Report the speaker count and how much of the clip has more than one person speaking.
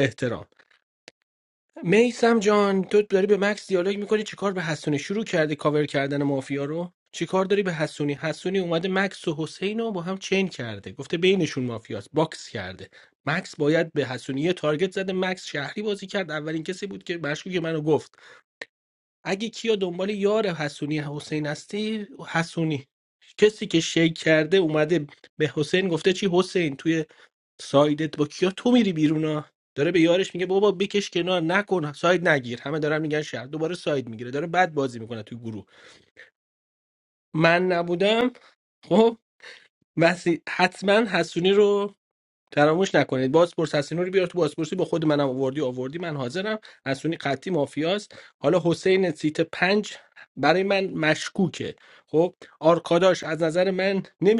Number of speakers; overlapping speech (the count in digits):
1, no overlap